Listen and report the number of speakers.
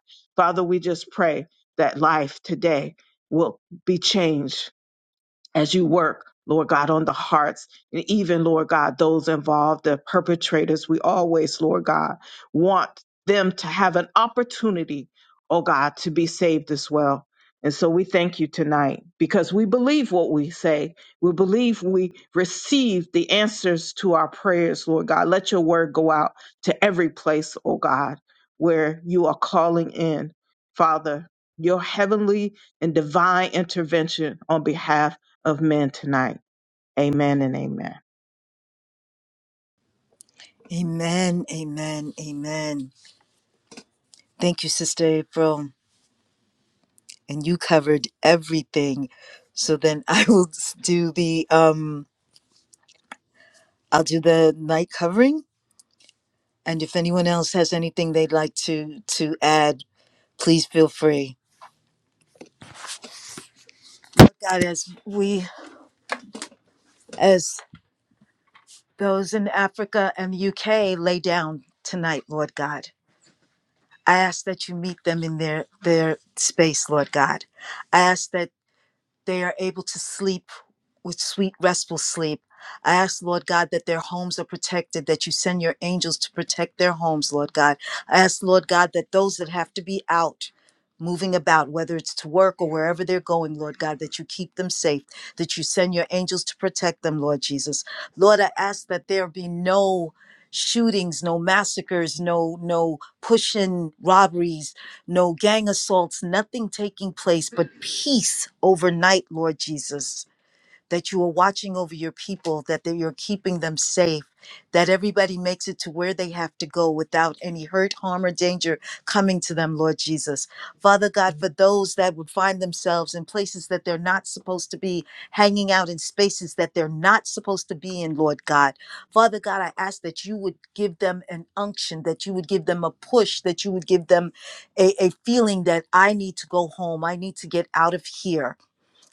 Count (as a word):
two